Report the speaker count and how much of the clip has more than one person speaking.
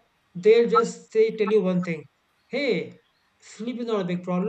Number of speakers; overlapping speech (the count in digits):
1, no overlap